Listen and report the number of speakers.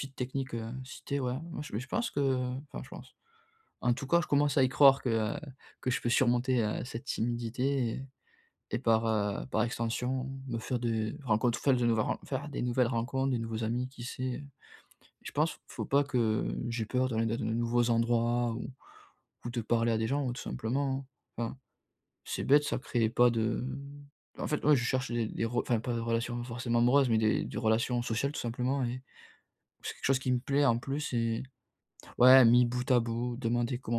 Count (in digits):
1